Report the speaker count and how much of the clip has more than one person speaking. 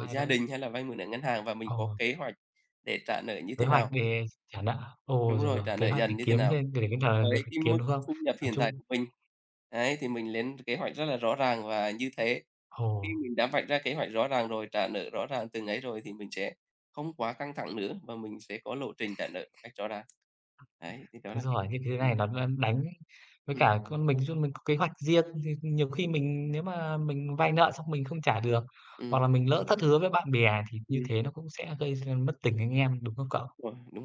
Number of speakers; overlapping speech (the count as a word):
two, about 13%